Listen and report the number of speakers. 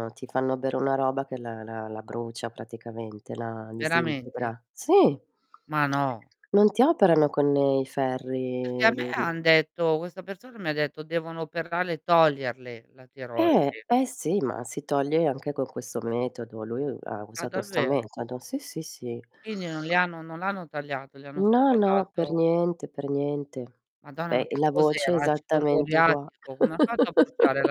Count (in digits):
2